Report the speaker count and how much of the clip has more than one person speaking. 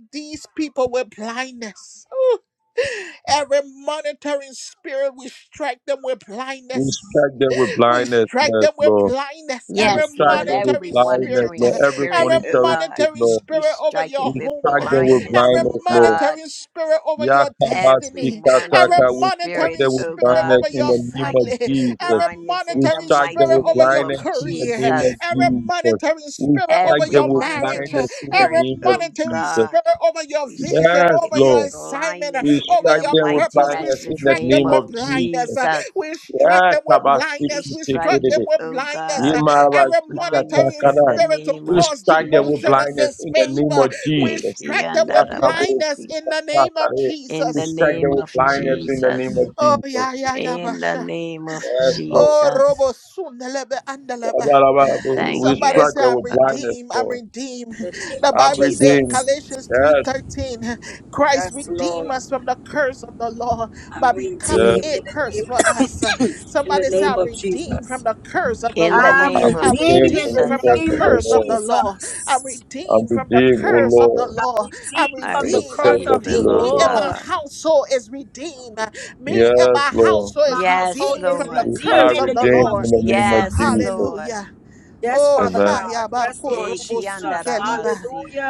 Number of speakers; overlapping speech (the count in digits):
4, about 70%